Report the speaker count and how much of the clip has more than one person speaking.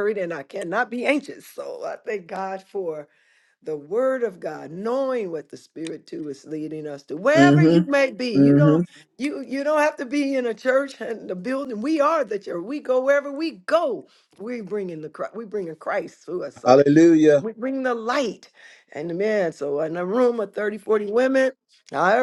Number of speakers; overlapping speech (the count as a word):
two, about 4%